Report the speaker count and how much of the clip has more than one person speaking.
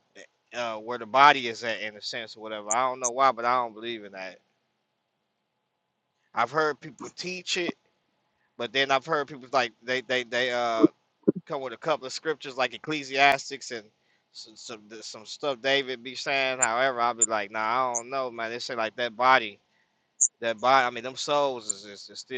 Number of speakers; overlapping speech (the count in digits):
1, no overlap